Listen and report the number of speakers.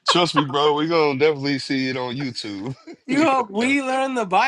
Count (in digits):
2